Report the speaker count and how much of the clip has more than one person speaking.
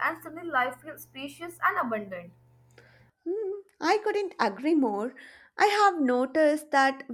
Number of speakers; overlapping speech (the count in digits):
2, no overlap